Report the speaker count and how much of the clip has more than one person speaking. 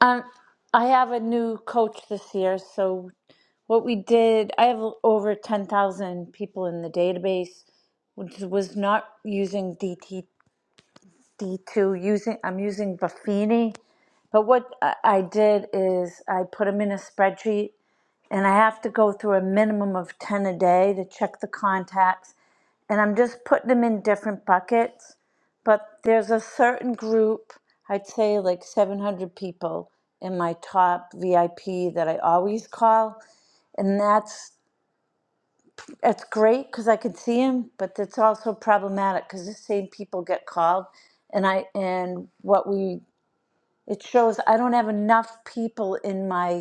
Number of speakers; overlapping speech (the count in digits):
1, no overlap